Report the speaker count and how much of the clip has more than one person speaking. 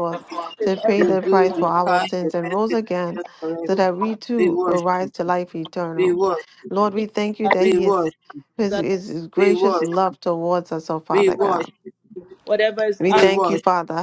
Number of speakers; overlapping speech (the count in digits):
3, about 43%